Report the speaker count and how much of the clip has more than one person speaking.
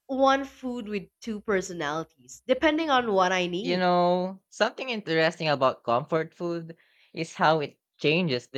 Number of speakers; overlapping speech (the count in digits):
2, about 2%